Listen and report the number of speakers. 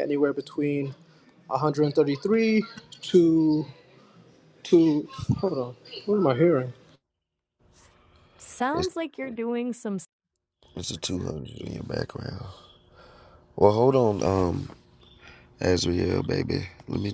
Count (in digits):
3